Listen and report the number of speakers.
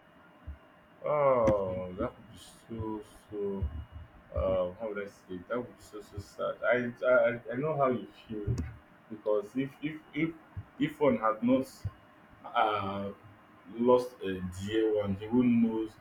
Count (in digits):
1